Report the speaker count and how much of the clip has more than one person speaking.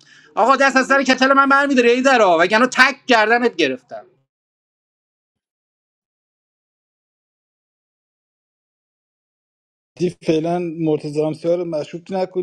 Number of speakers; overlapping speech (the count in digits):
2, no overlap